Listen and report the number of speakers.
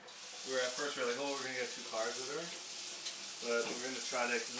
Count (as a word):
one